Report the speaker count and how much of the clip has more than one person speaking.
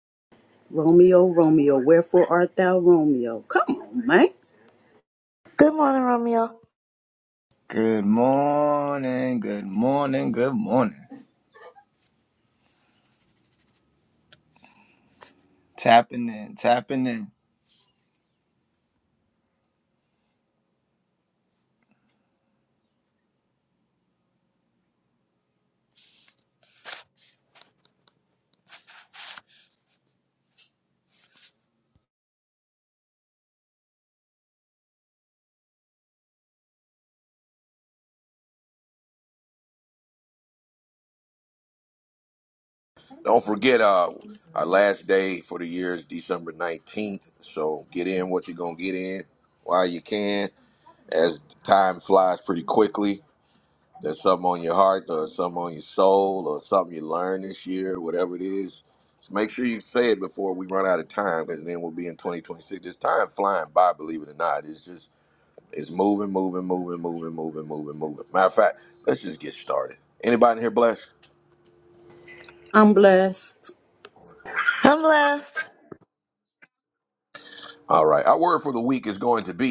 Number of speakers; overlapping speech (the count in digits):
4, no overlap